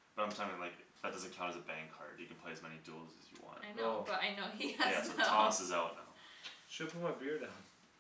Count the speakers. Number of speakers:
3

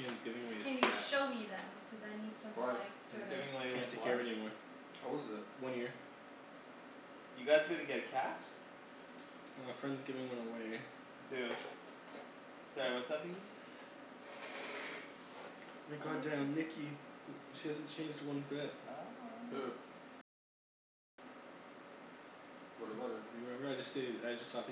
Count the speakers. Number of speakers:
4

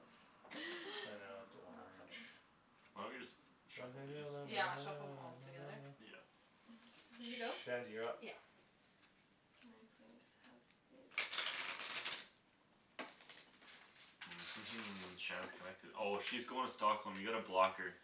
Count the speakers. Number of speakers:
4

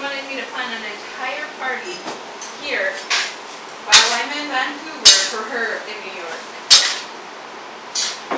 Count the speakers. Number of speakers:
1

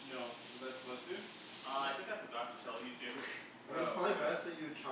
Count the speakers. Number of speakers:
3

